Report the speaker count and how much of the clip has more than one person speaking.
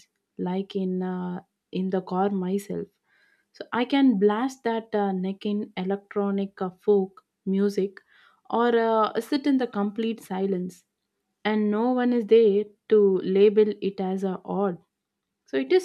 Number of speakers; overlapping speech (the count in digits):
1, no overlap